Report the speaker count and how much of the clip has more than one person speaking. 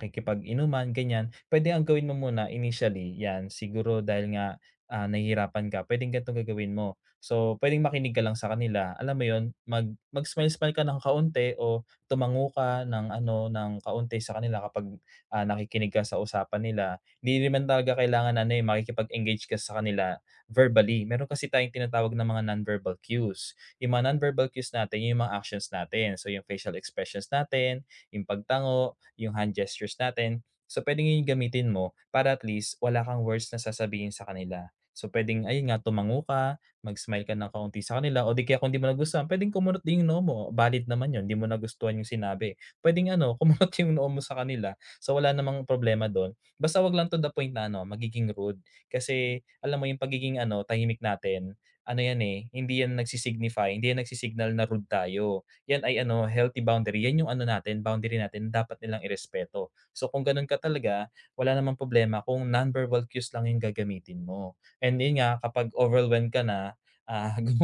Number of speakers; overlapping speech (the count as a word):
one, no overlap